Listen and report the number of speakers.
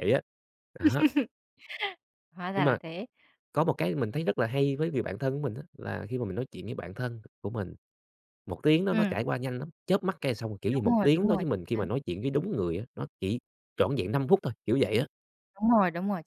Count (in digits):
2